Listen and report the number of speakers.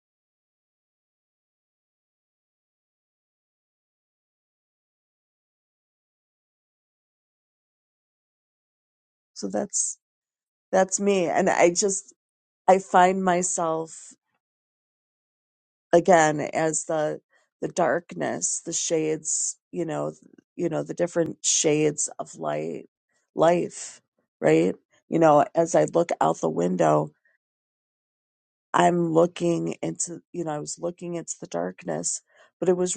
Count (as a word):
one